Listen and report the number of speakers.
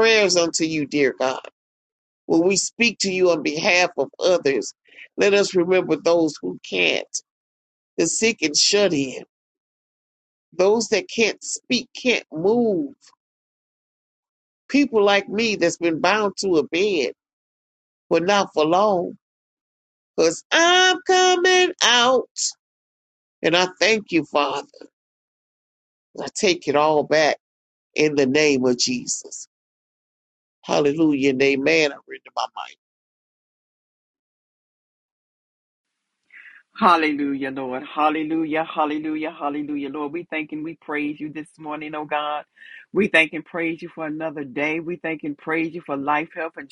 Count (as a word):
two